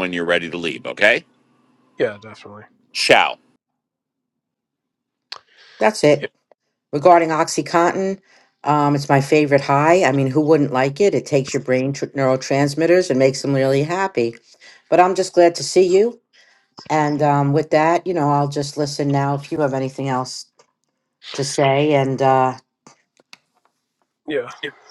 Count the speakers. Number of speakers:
3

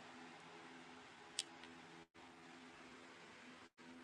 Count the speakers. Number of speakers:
0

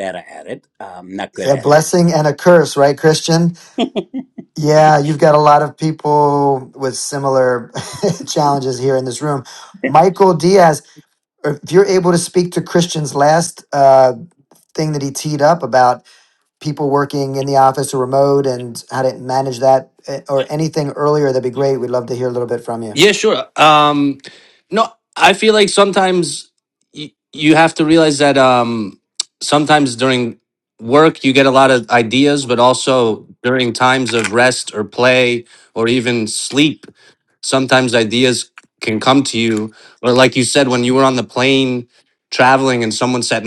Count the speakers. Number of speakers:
3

